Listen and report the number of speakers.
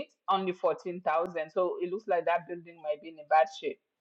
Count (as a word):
one